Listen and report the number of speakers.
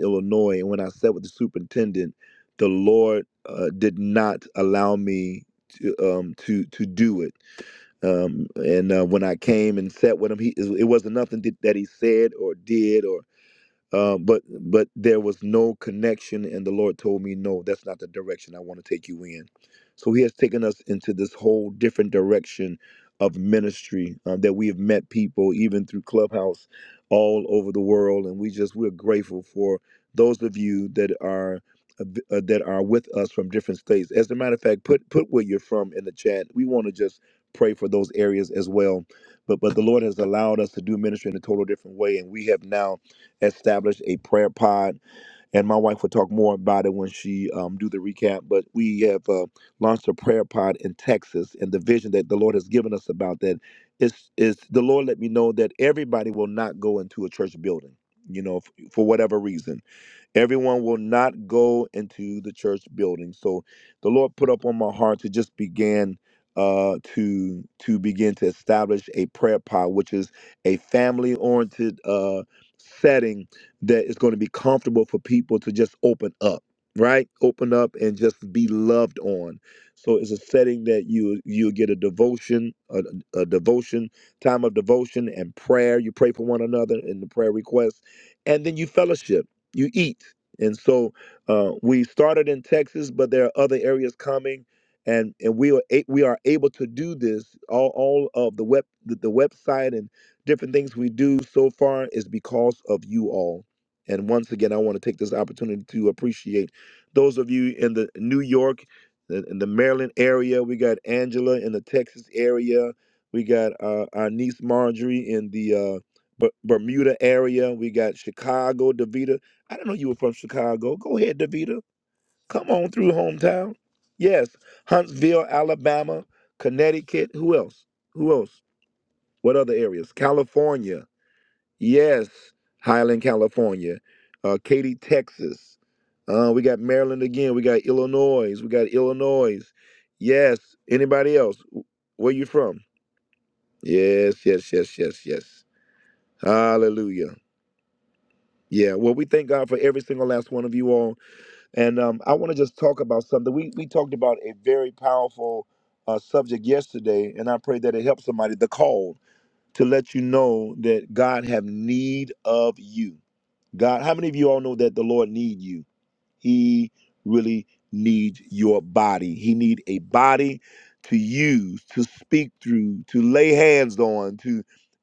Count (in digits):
1